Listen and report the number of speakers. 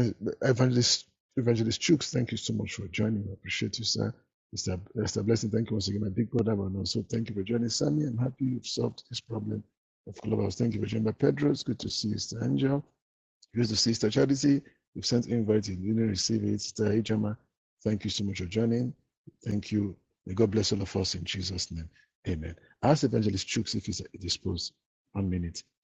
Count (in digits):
1